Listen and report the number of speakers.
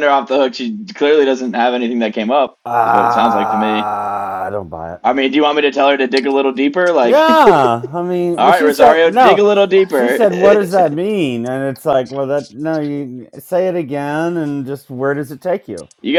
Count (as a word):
two